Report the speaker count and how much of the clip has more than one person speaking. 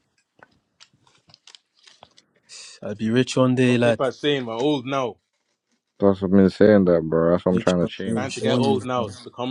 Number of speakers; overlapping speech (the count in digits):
3, about 20%